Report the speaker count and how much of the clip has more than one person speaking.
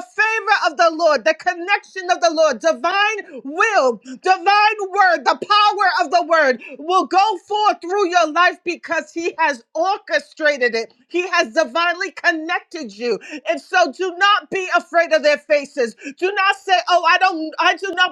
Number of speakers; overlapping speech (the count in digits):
1, no overlap